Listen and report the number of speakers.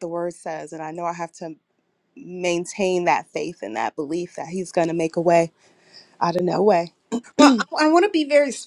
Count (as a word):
two